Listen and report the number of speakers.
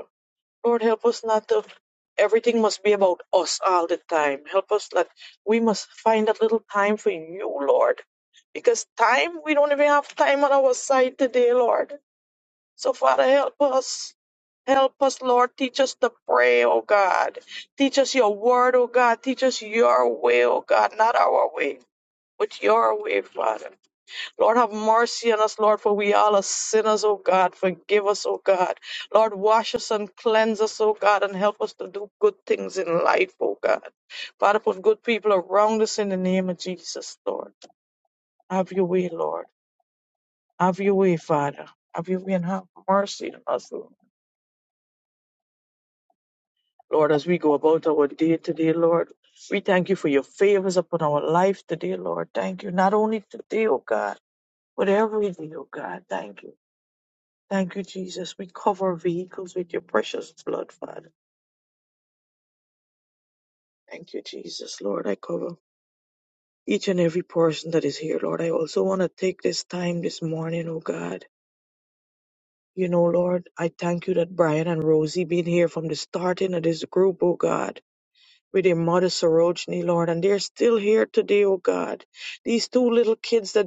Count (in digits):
1